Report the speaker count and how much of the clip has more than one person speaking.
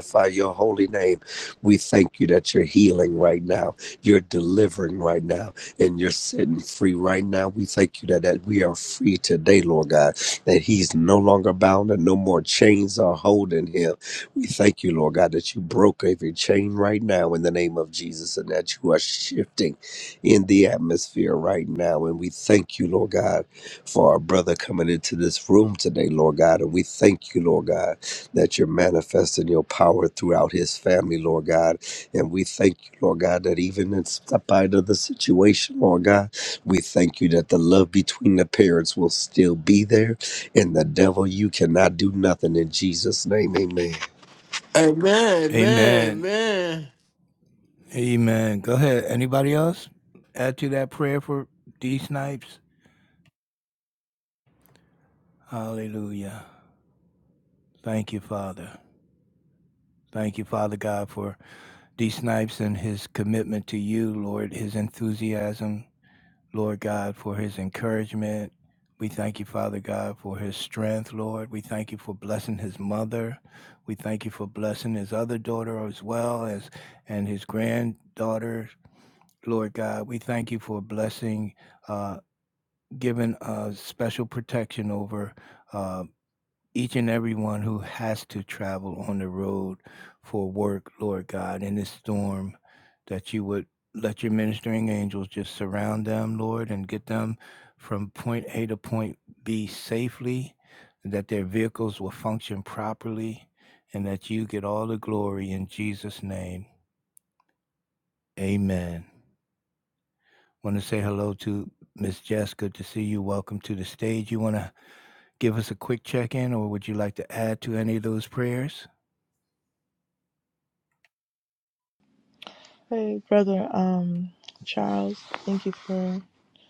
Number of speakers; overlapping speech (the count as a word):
four, about 1%